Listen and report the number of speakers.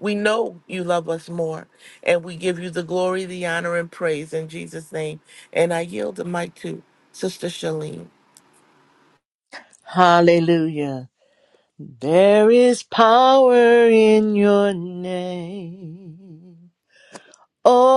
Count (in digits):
2